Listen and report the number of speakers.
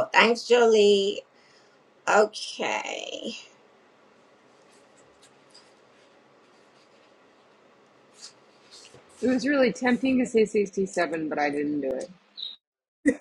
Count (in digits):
2